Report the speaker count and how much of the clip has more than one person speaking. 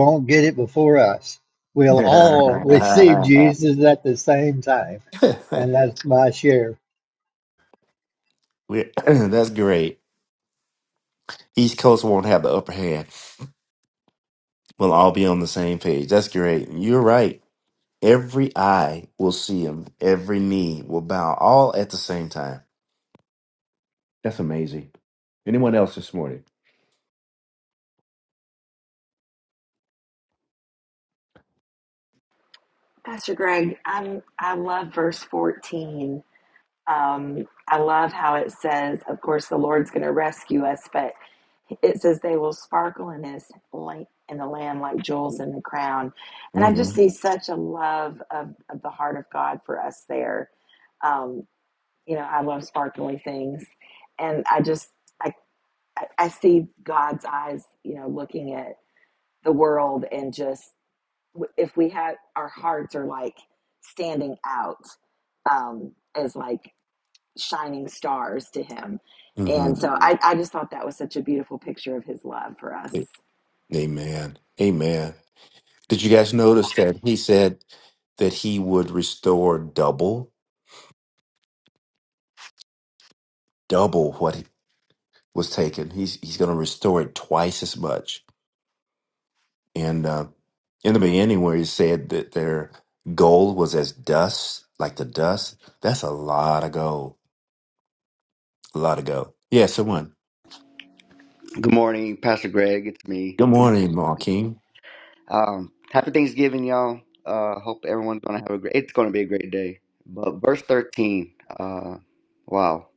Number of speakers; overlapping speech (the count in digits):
4, about 1%